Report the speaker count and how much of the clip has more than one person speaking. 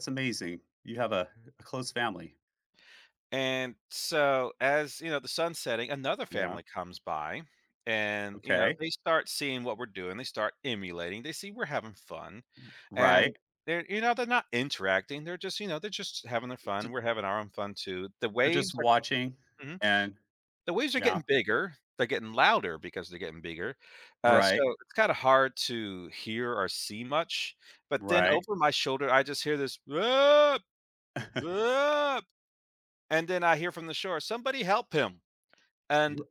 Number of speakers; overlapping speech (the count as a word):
two, about 7%